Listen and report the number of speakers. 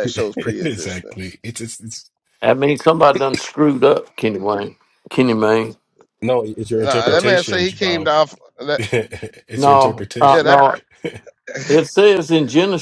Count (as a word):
three